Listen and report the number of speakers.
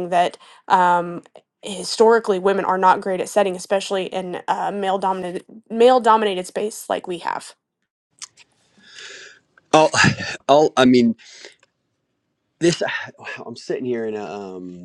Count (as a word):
two